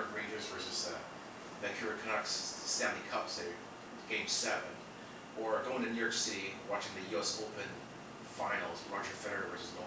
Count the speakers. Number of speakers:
one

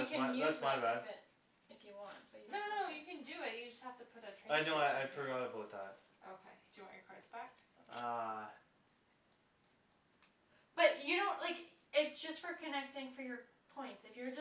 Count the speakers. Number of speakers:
three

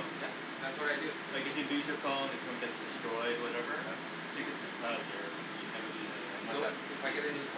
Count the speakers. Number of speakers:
two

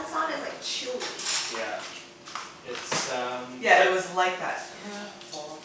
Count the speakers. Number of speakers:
three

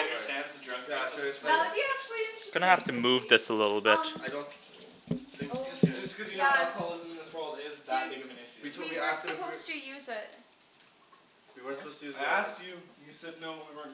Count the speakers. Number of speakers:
four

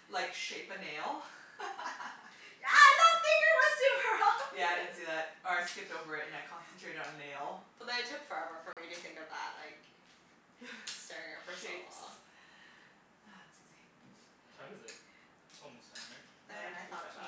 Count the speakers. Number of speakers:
three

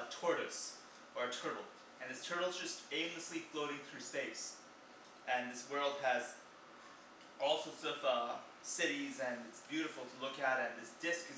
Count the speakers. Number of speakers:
one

